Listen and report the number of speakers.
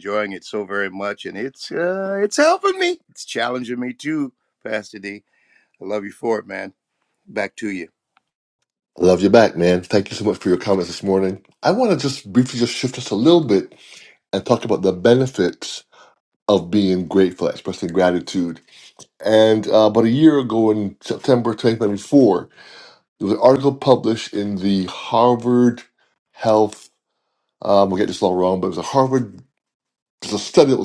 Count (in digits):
2